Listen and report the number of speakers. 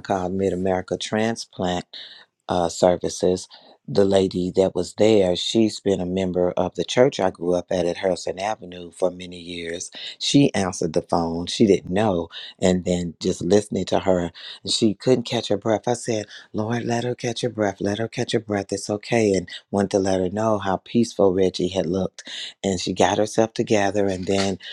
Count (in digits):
1